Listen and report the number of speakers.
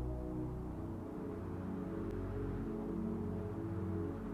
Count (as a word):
zero